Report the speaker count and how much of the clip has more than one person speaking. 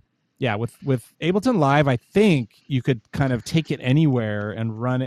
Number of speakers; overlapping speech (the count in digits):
1, no overlap